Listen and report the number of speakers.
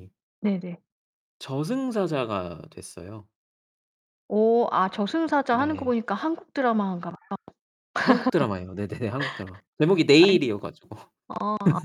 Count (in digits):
2